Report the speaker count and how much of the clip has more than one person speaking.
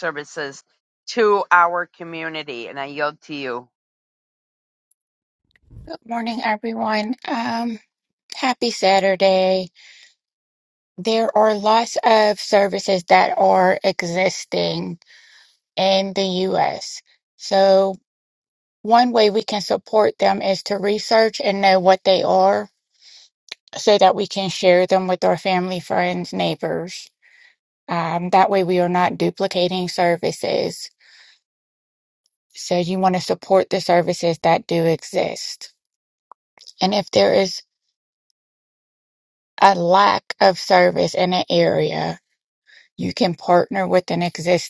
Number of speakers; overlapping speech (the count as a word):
two, no overlap